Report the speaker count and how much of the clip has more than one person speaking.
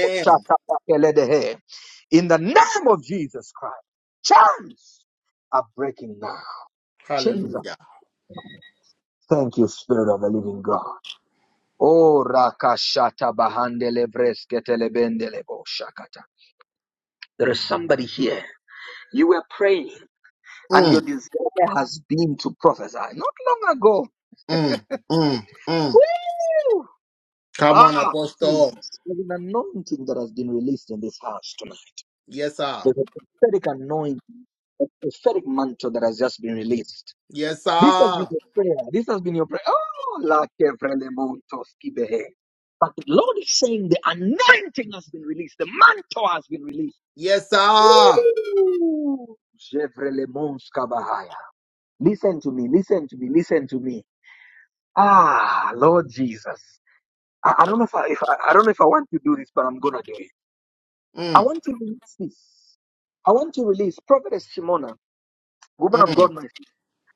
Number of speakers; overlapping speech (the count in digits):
2, about 5%